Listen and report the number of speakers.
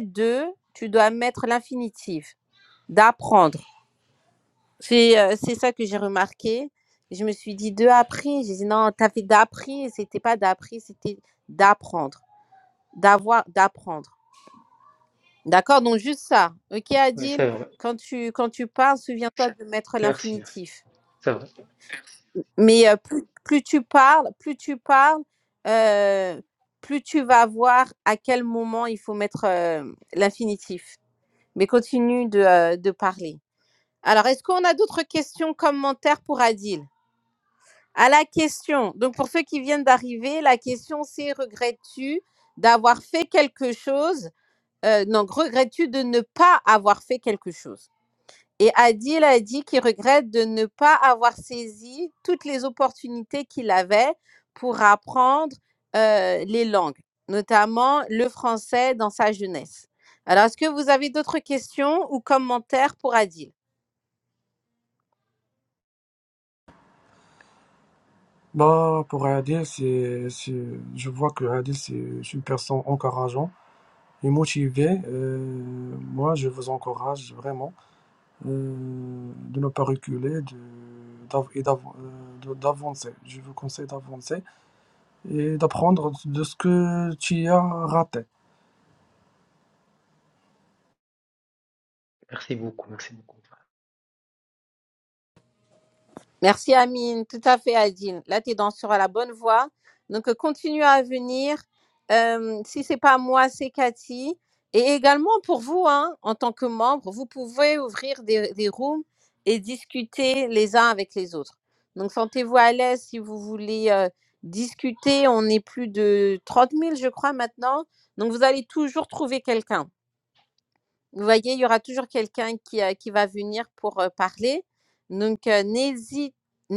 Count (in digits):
3